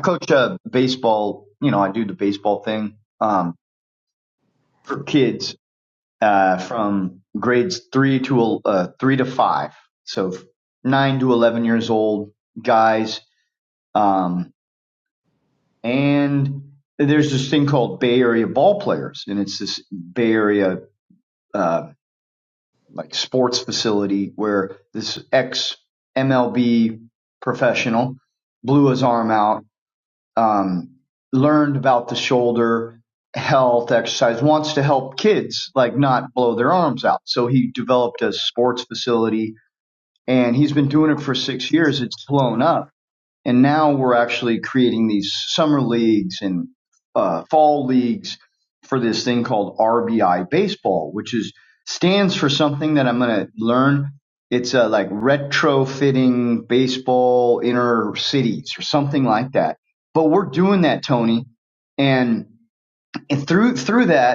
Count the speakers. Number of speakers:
1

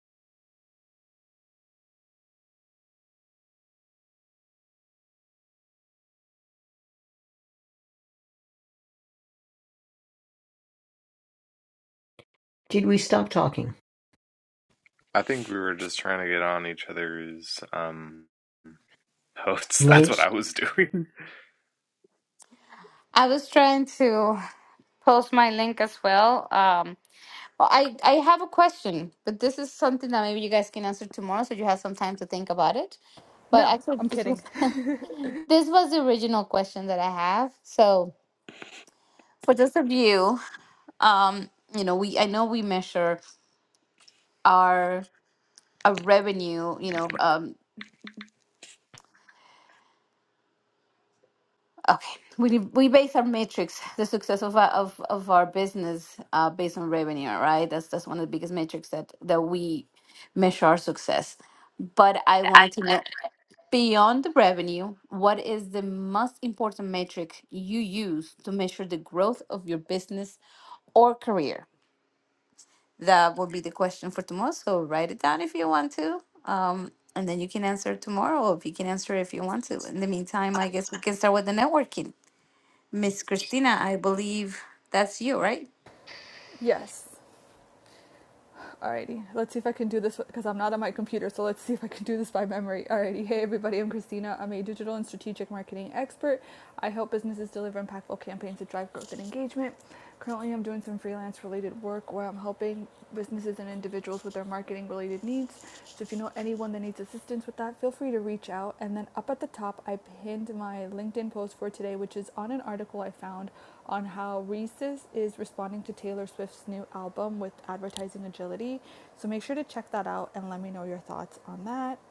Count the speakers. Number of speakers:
4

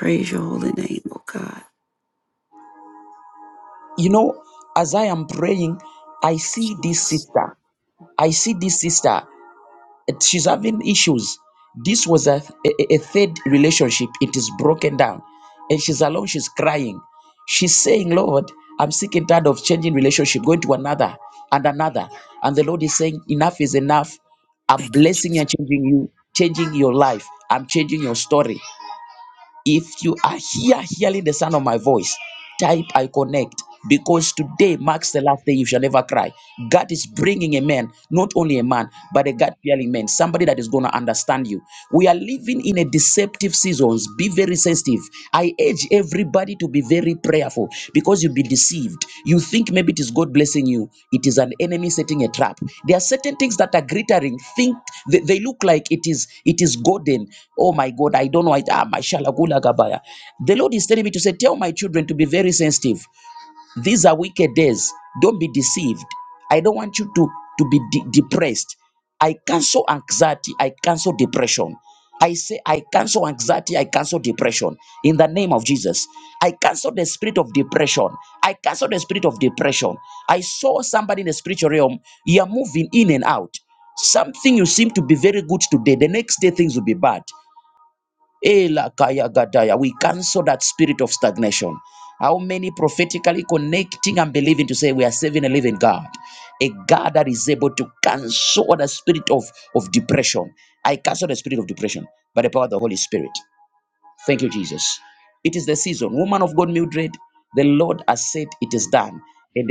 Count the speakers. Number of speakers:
2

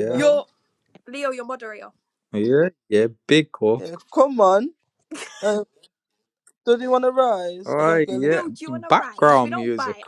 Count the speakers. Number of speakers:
3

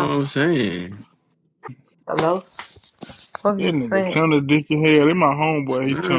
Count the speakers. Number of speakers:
3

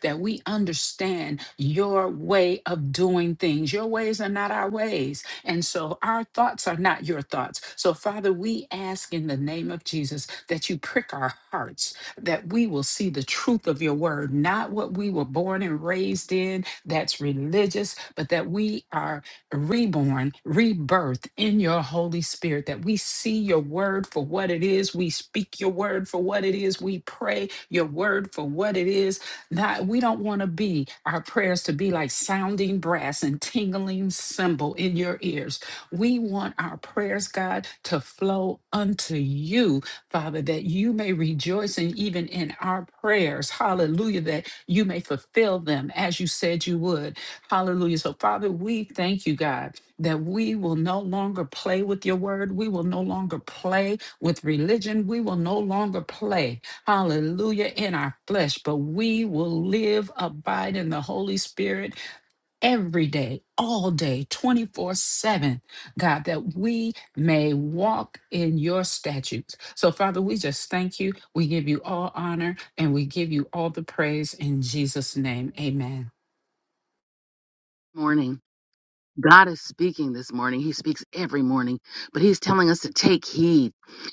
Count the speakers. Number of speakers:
2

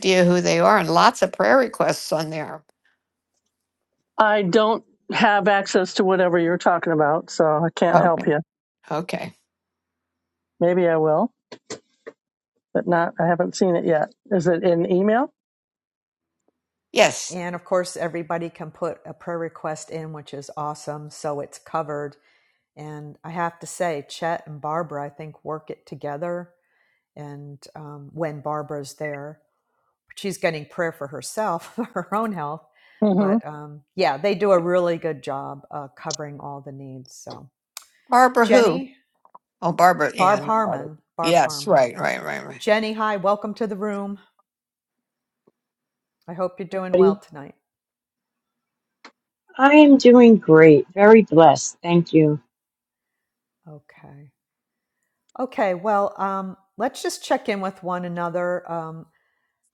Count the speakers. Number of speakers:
4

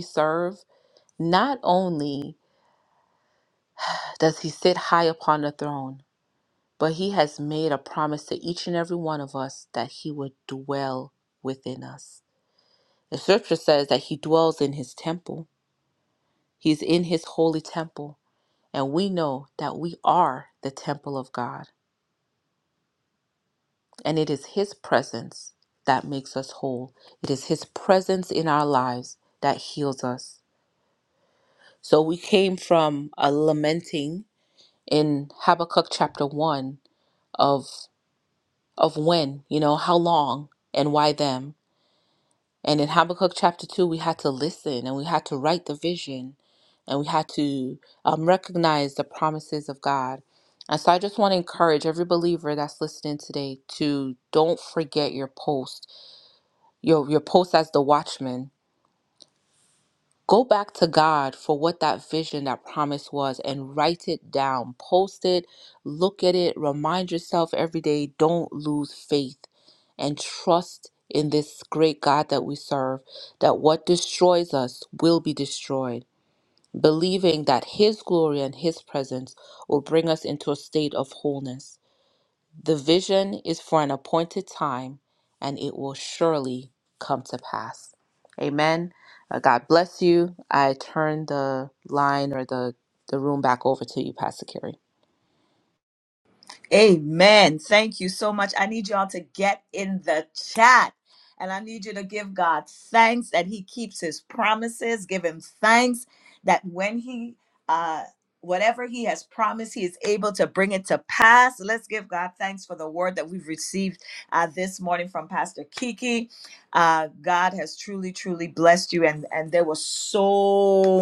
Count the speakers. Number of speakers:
2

